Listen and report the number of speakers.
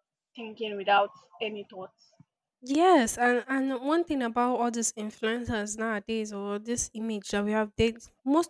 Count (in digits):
2